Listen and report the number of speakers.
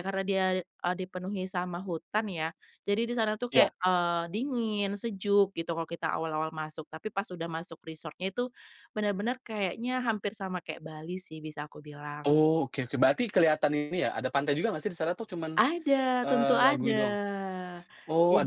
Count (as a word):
two